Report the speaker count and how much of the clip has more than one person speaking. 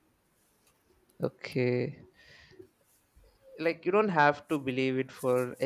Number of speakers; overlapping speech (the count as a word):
one, no overlap